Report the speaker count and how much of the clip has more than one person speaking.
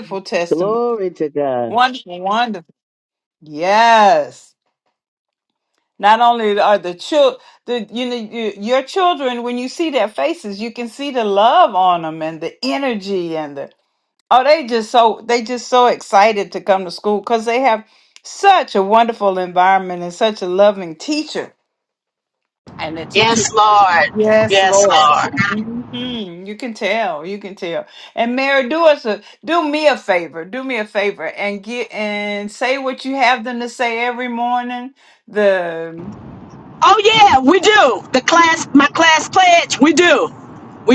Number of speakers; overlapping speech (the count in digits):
3, about 4%